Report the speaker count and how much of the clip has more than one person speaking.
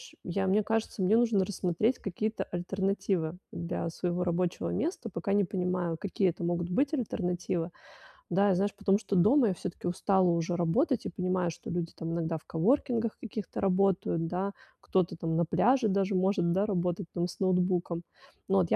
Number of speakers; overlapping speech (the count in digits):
1, no overlap